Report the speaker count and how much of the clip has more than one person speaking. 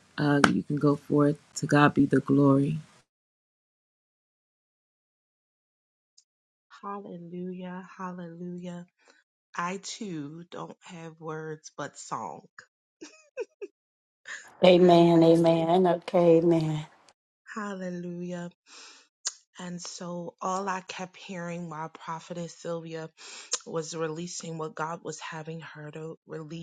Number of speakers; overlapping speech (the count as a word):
three, about 3%